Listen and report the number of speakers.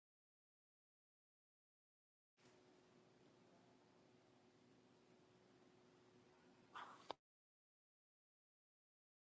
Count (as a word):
zero